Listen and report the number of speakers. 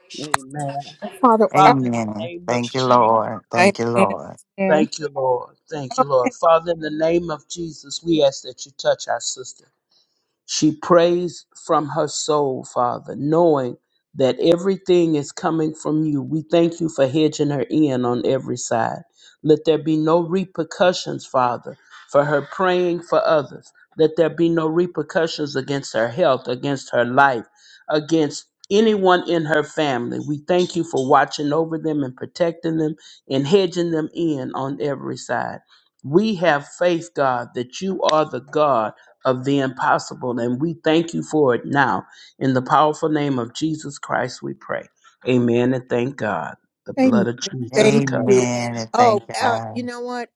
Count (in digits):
3